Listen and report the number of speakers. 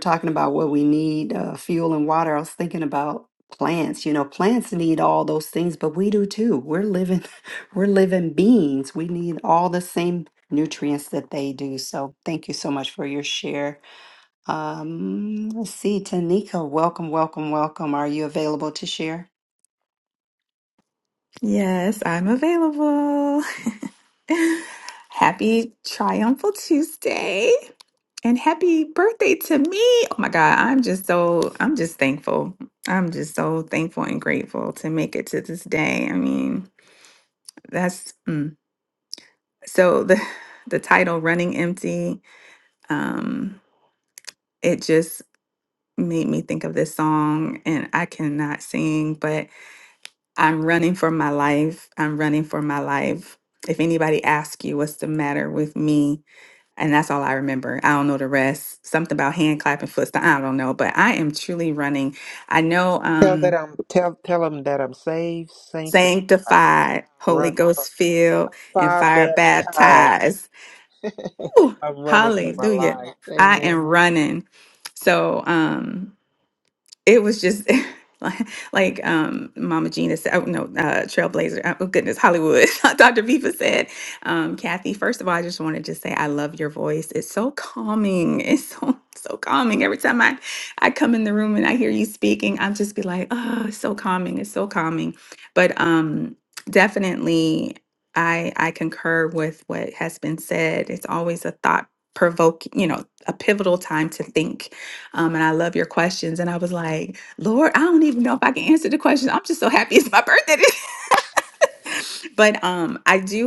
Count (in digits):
3